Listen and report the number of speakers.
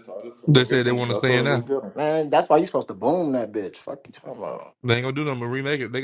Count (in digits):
3